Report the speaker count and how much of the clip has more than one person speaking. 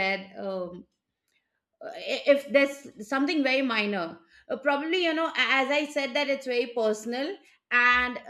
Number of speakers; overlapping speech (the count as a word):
one, no overlap